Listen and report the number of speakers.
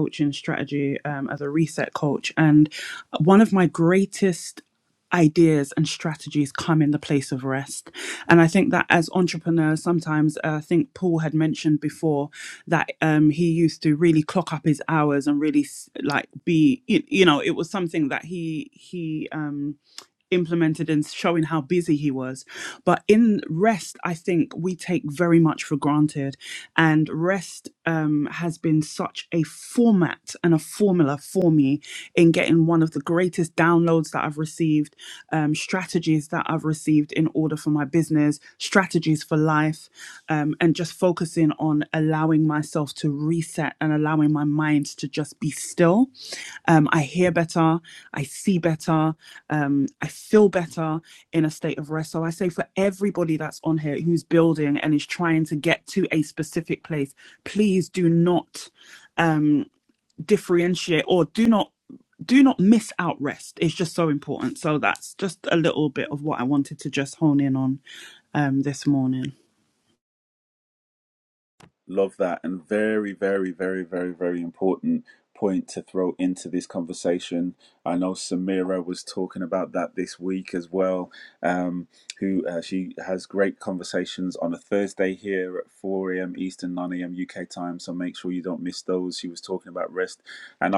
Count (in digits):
2